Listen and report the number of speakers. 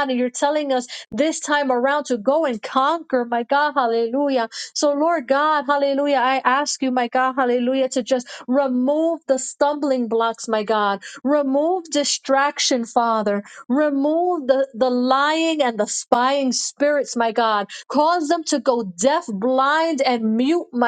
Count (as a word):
one